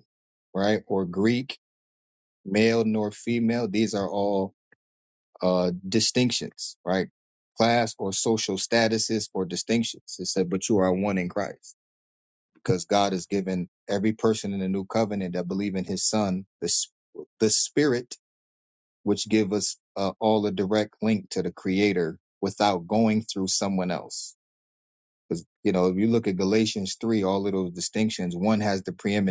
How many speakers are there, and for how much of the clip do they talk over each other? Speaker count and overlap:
1, no overlap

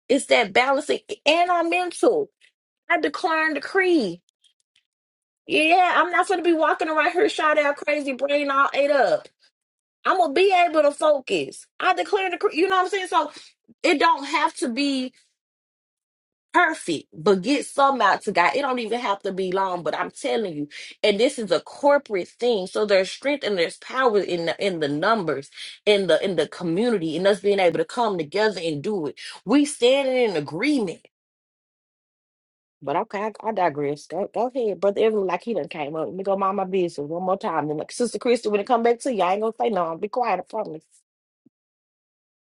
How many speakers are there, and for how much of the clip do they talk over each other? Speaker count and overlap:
1, no overlap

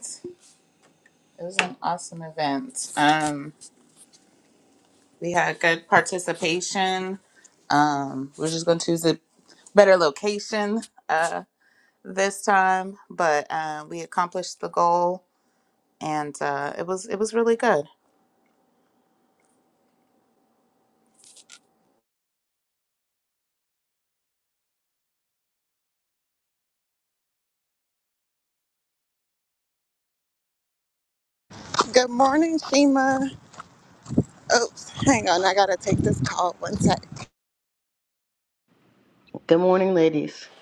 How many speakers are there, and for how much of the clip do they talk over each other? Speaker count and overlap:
3, no overlap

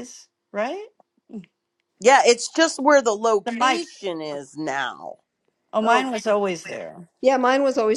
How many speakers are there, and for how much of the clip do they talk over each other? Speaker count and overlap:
3, about 8%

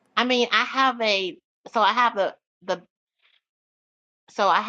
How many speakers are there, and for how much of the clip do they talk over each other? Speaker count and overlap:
1, no overlap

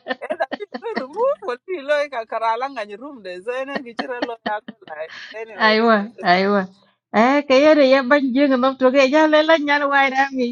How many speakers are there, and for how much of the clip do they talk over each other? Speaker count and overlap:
2, about 2%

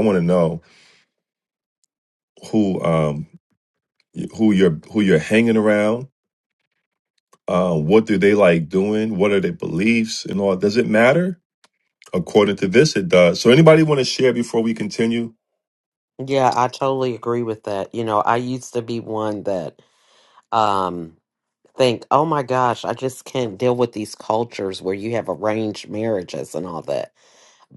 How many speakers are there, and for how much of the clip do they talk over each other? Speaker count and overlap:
2, no overlap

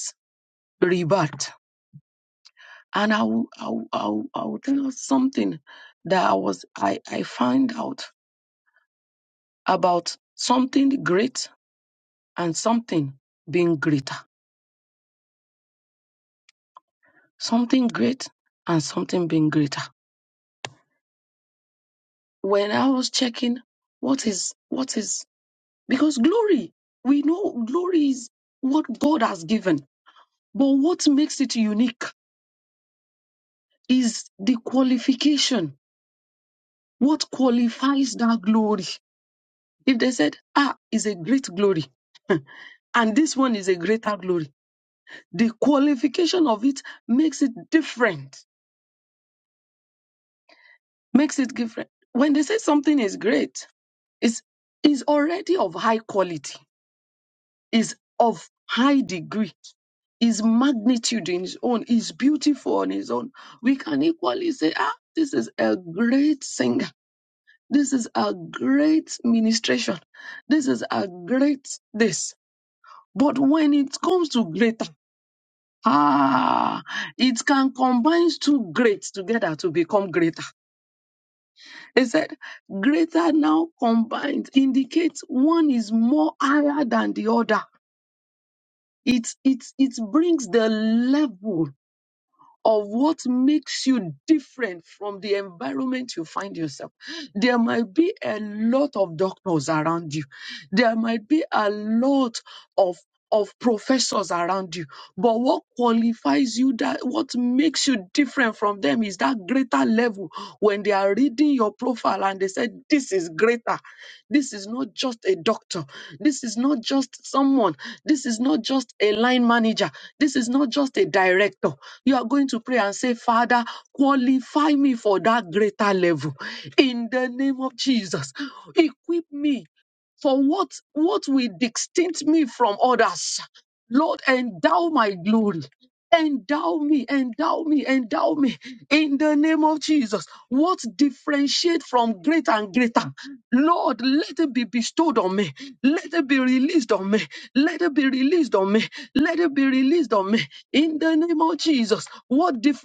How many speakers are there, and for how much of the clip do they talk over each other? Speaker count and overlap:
1, no overlap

